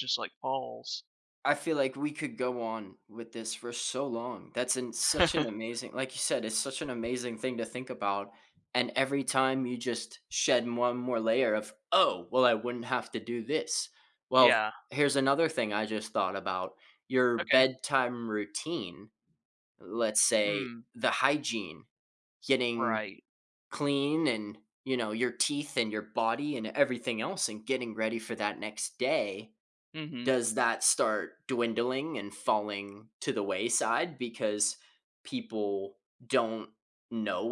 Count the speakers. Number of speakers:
2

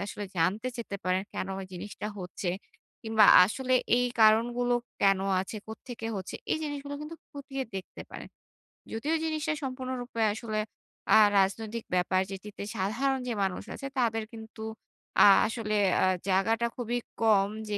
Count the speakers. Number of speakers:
1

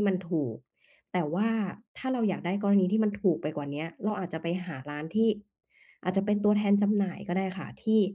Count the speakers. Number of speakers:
1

